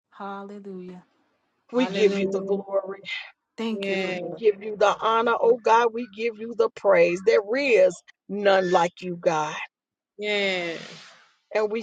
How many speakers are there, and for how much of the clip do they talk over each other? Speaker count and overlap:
three, about 16%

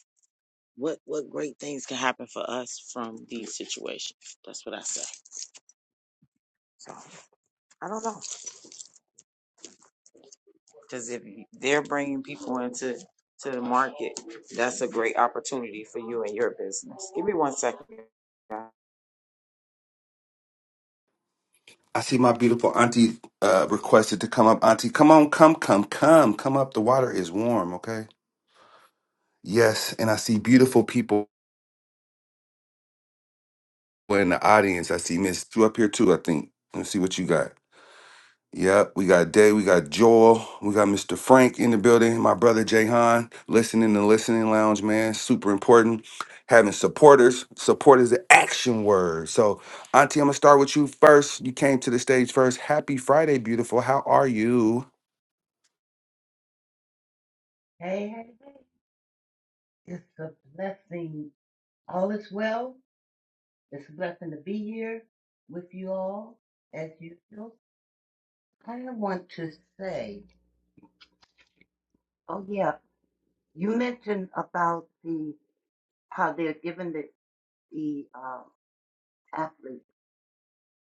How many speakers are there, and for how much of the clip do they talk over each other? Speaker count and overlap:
three, no overlap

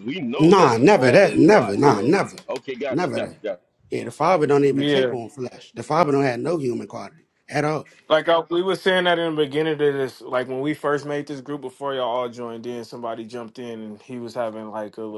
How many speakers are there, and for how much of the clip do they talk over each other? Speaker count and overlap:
three, about 18%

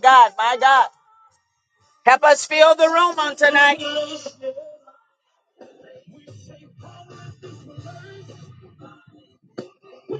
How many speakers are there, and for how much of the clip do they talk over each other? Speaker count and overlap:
one, no overlap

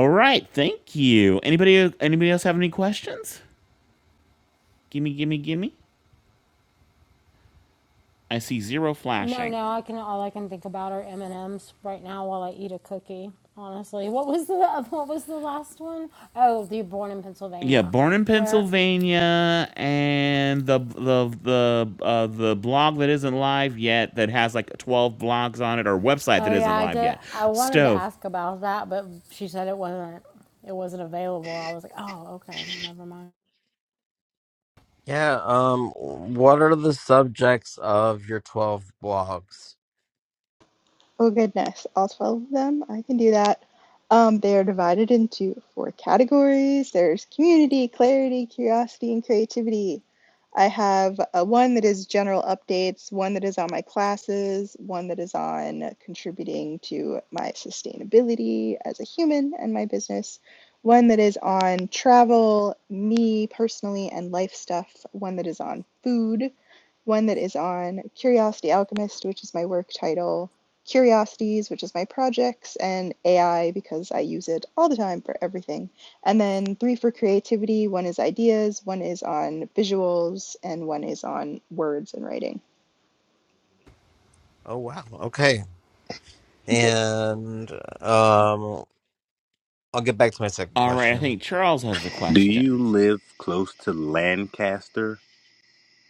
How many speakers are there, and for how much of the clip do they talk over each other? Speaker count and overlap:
five, about 3%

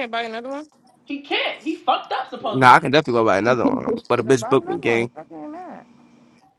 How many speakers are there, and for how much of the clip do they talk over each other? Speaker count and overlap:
three, about 19%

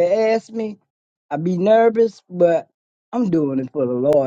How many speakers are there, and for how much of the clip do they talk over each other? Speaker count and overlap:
one, no overlap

